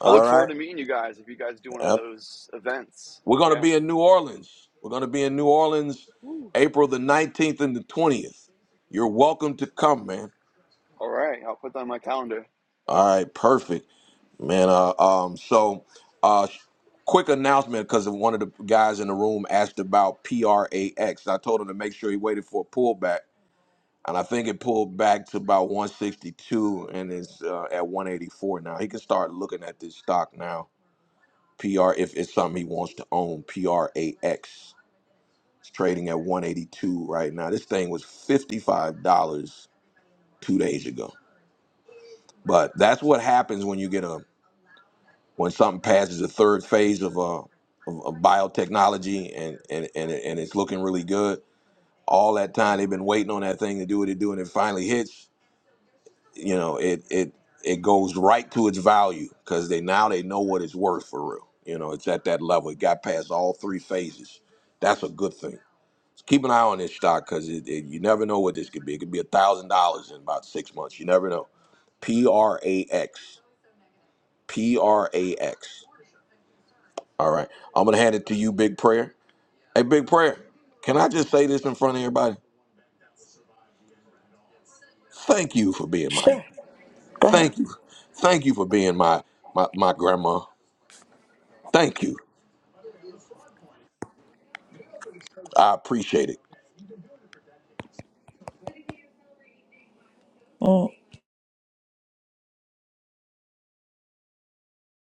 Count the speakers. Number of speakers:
3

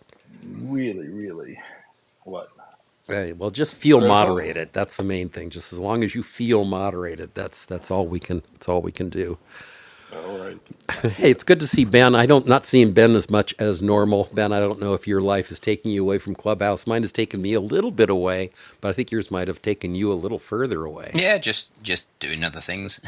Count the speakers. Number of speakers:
3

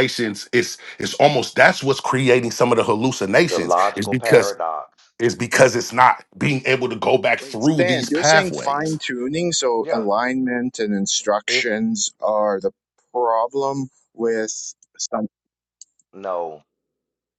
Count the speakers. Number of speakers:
3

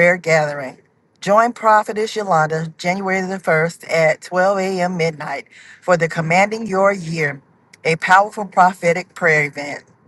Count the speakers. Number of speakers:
1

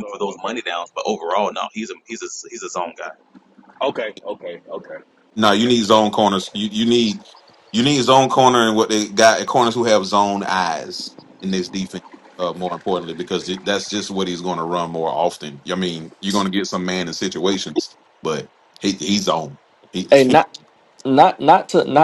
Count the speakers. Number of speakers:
4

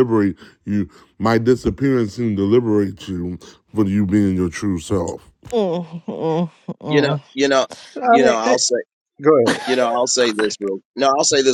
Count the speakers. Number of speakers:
4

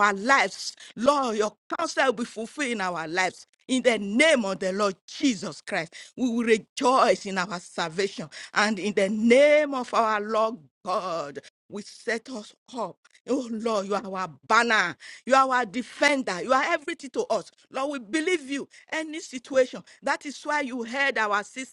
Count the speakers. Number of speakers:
1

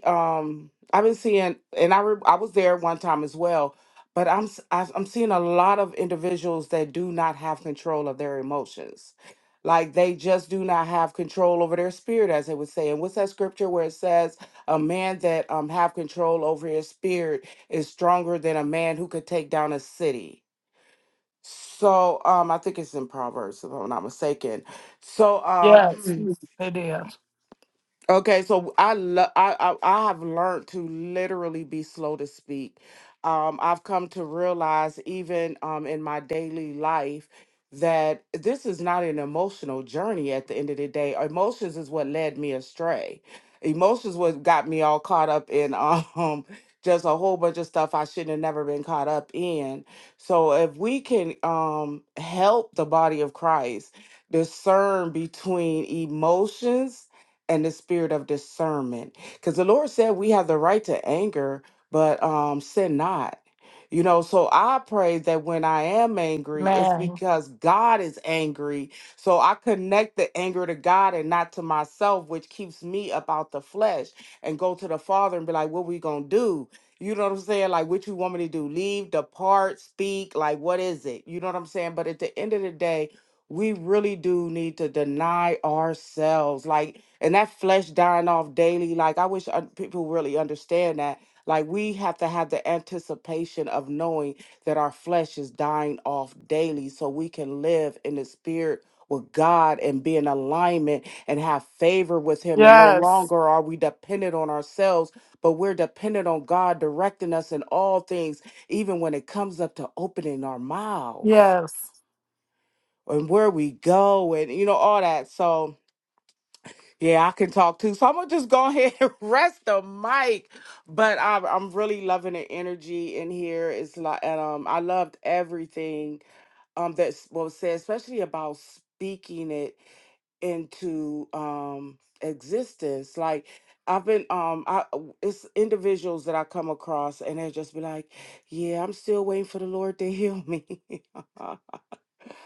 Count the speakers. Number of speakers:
2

